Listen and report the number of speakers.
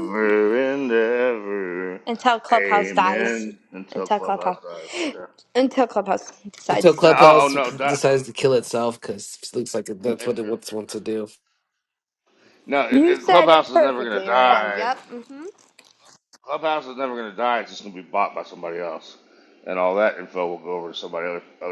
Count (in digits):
3